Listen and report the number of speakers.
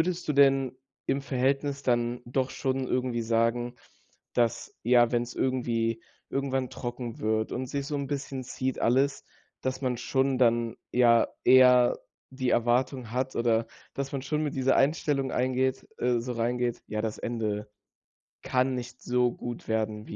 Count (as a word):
one